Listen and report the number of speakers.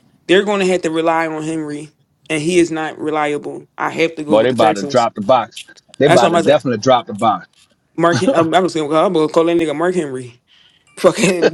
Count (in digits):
2